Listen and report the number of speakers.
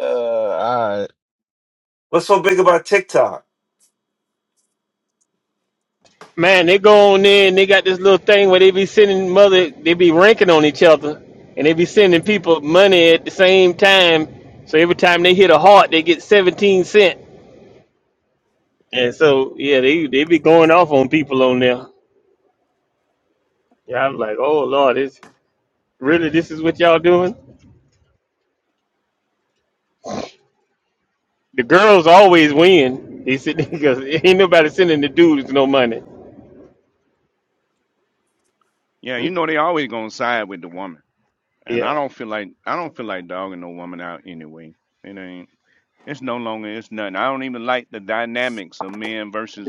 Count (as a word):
four